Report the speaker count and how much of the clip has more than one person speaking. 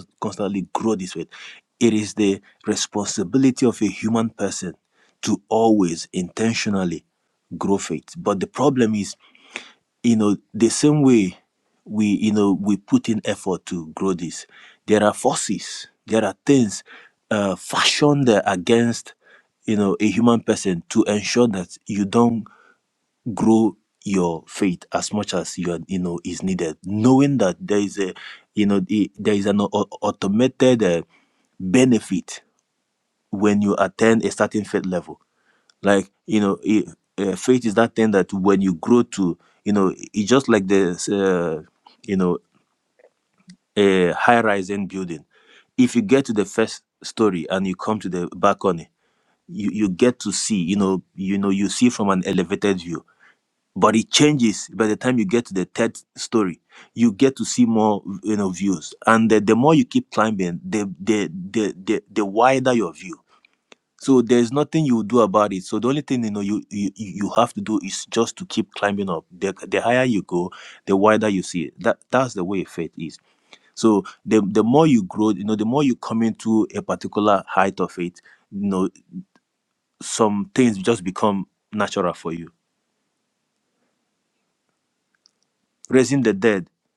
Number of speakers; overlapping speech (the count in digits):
1, no overlap